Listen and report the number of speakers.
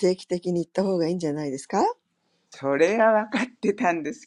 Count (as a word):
two